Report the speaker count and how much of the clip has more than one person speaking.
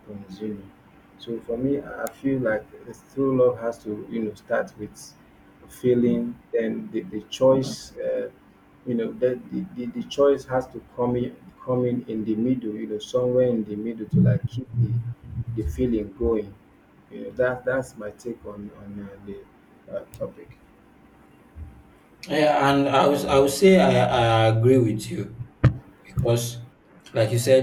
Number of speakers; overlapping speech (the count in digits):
2, no overlap